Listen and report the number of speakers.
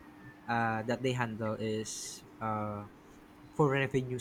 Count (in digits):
1